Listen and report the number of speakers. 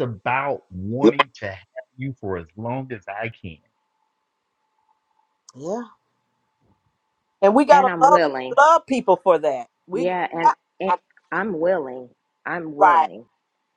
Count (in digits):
3